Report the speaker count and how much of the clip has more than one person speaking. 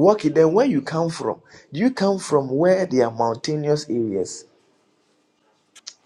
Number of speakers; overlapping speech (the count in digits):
1, no overlap